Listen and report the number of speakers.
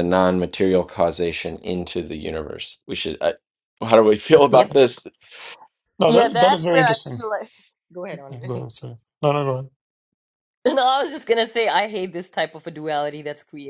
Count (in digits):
3